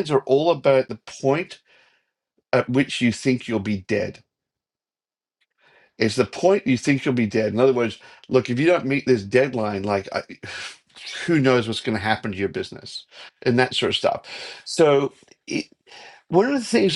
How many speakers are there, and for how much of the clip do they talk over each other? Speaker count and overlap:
one, no overlap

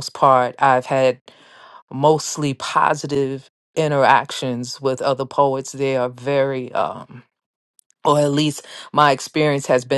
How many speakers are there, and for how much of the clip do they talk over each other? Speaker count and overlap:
one, no overlap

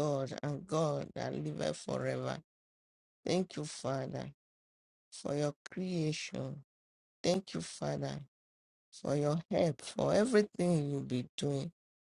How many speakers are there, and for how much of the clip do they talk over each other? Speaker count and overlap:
one, no overlap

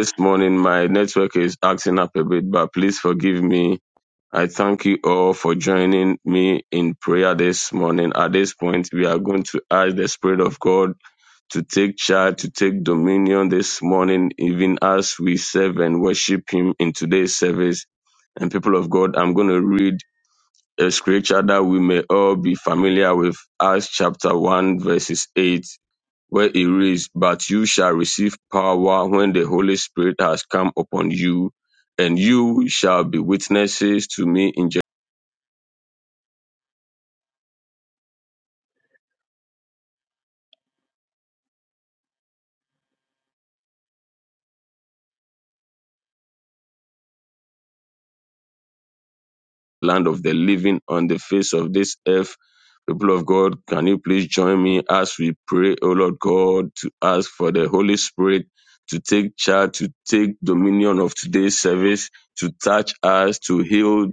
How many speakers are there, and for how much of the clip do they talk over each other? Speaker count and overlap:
one, no overlap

